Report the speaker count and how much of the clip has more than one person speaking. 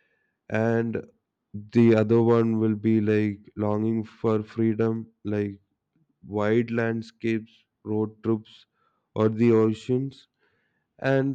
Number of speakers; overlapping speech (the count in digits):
1, no overlap